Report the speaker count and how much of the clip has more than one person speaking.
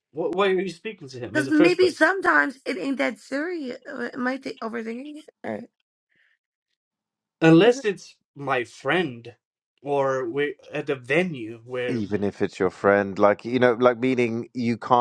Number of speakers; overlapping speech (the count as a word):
three, about 7%